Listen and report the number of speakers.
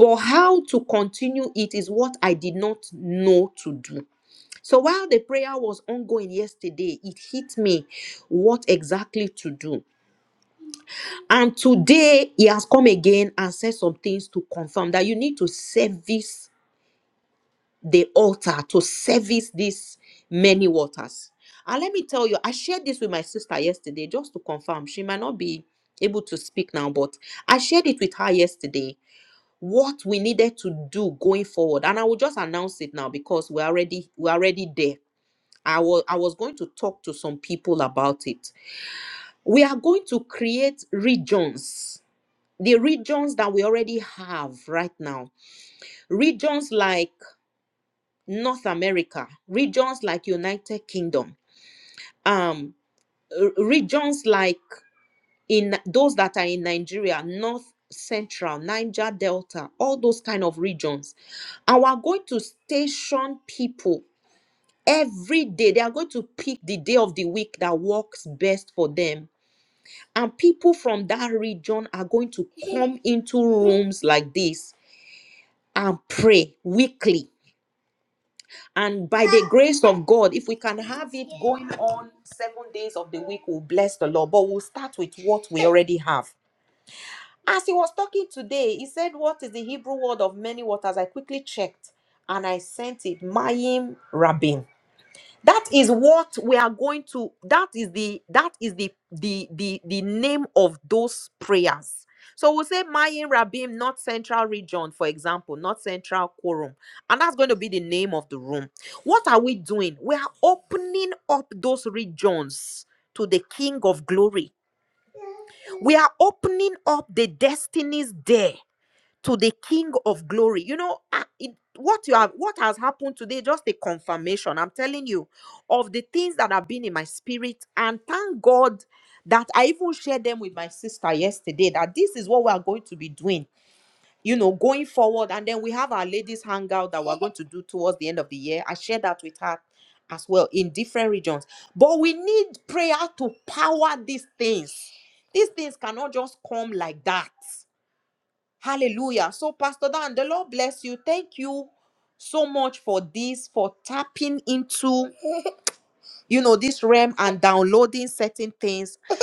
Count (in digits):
1